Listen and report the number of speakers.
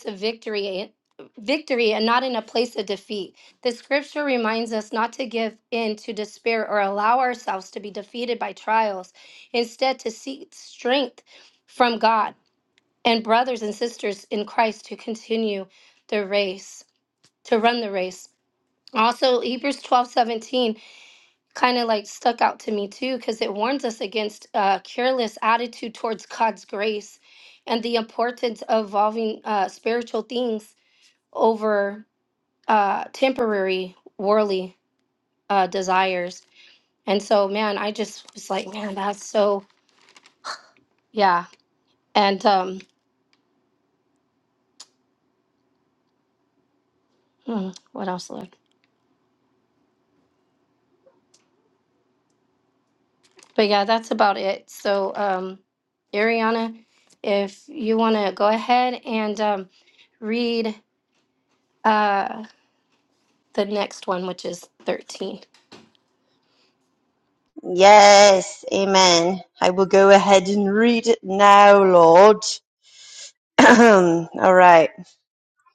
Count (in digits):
2